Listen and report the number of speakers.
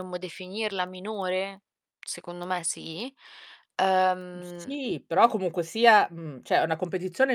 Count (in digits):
2